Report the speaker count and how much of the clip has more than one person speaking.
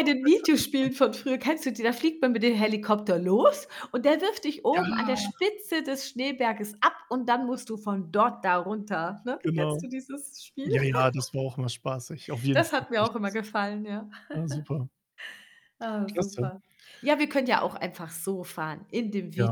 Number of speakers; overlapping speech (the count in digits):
2, about 15%